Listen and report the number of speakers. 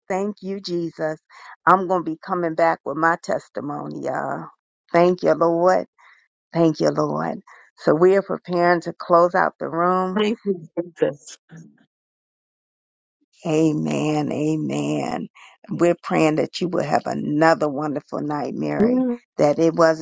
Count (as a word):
two